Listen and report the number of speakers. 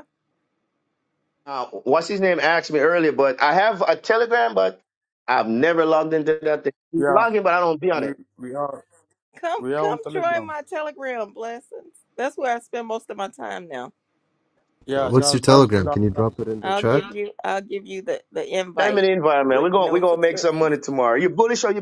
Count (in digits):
4